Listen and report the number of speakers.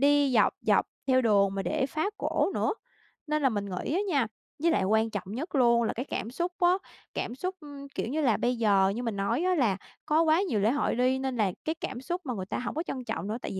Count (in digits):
1